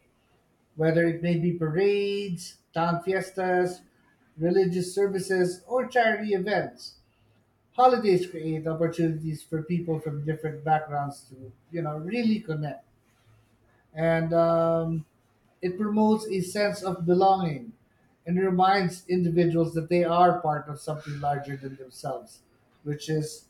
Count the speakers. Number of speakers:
1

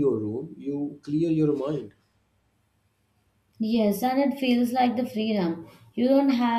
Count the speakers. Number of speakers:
2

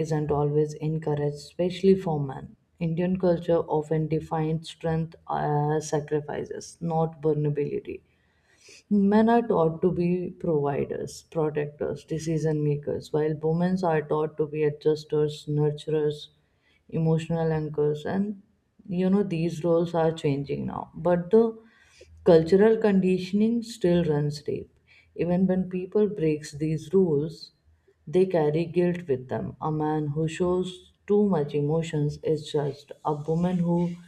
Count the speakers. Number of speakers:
1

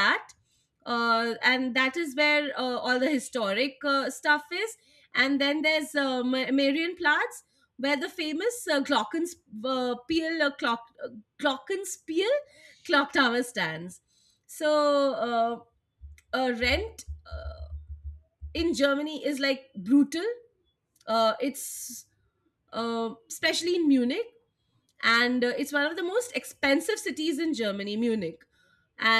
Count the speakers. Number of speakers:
1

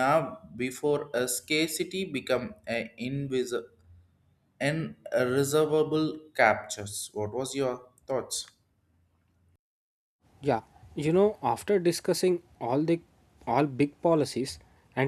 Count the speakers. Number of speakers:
2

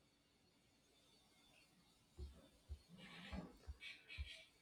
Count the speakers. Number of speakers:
0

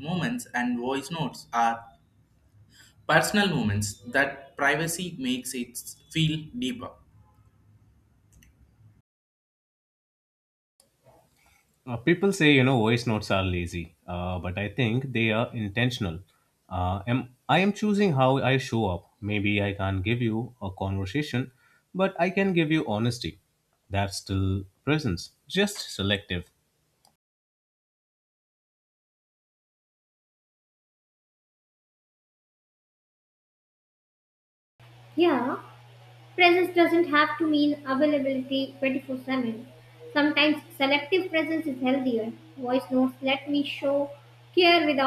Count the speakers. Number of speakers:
3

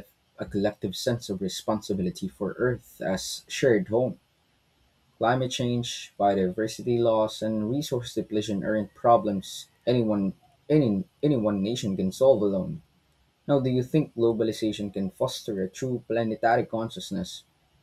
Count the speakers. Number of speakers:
1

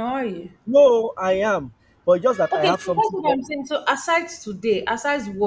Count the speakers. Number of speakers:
2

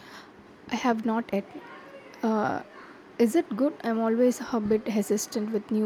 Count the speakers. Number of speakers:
1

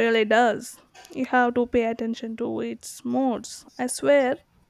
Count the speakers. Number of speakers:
1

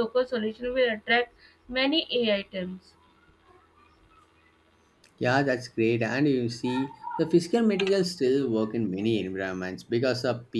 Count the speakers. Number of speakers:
2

